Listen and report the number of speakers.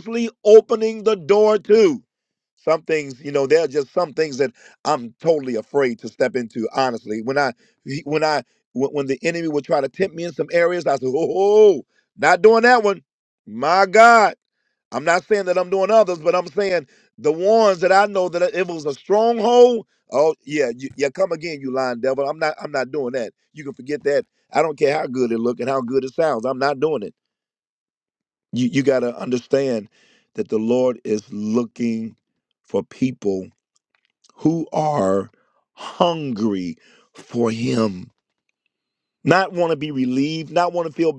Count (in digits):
1